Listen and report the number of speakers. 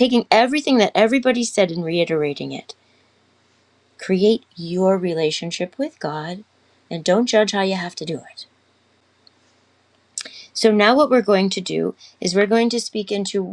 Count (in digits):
1